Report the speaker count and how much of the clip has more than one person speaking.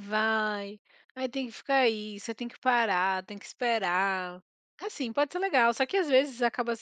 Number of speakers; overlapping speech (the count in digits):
1, no overlap